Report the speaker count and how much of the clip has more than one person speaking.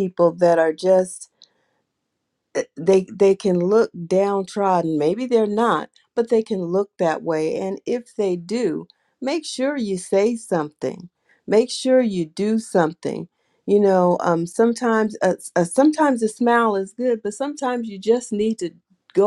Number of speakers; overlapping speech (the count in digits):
1, no overlap